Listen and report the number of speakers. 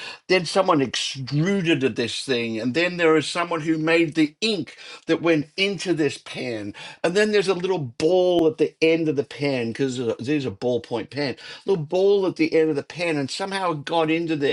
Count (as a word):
one